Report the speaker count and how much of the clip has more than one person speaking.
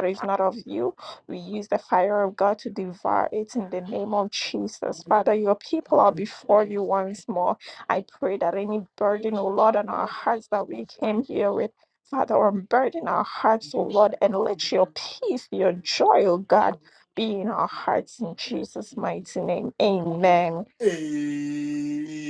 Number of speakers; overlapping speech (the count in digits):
2, no overlap